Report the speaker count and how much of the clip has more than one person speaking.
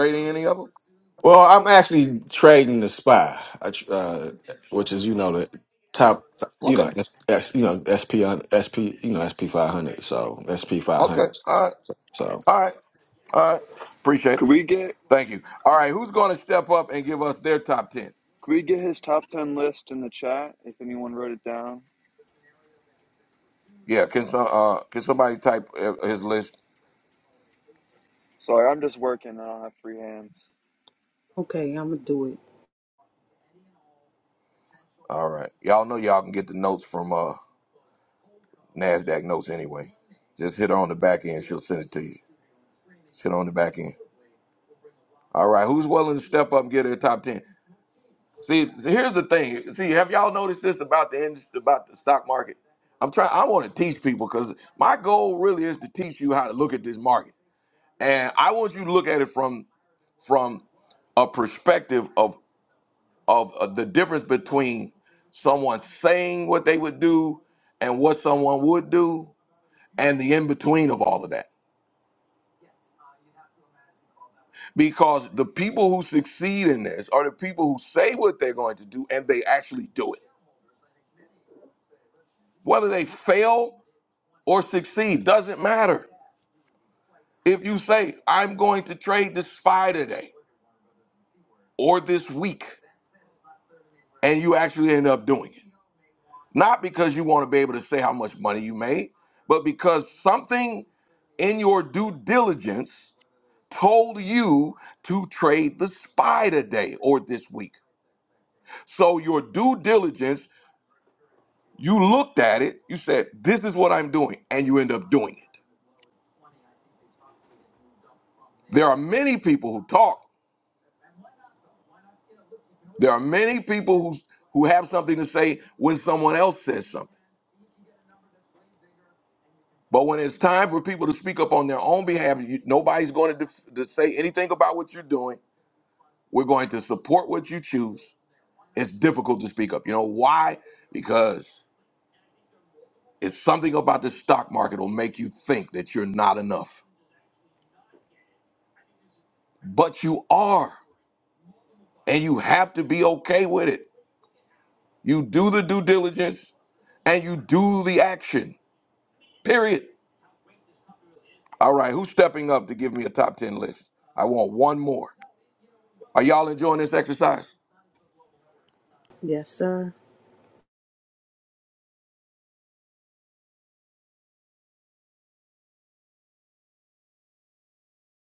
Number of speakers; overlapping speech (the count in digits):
4, under 1%